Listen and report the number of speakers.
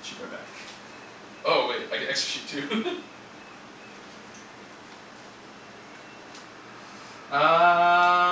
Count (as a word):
two